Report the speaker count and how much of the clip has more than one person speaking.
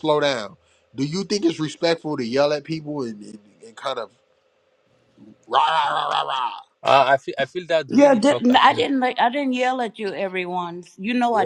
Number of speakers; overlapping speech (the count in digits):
3, about 9%